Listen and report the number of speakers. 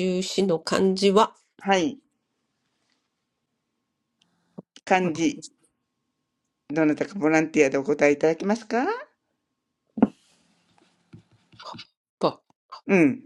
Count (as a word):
two